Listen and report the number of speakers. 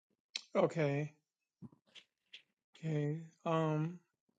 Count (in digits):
1